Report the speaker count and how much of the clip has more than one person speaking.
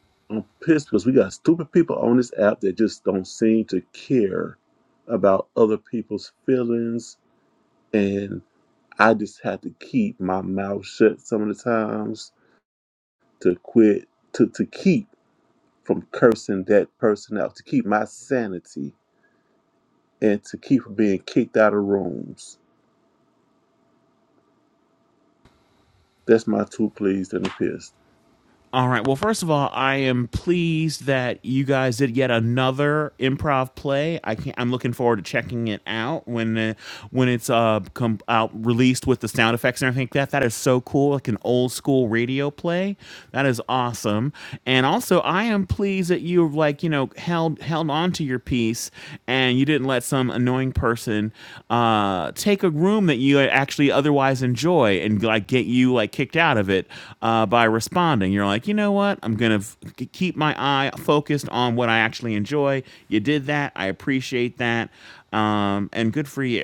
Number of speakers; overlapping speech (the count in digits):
2, no overlap